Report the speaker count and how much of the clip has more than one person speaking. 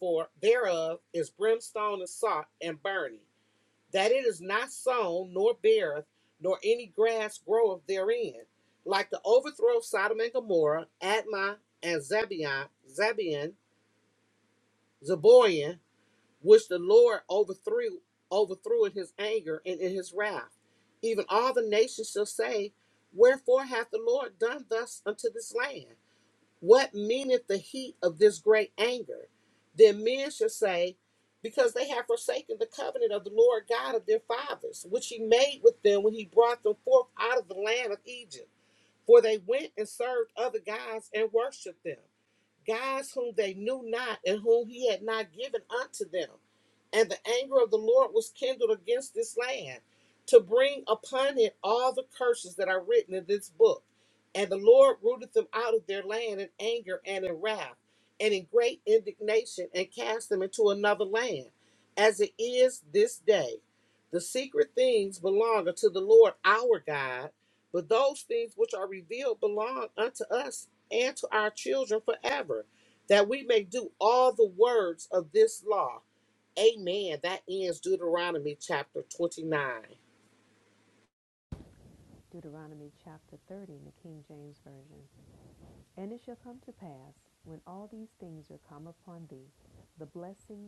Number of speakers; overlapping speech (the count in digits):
2, no overlap